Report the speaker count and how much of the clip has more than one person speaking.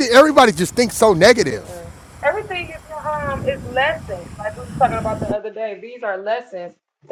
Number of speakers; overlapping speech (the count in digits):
2, about 2%